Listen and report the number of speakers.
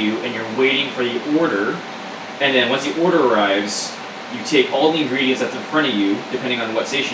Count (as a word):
one